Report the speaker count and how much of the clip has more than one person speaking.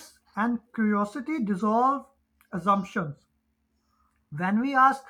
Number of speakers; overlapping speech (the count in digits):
1, no overlap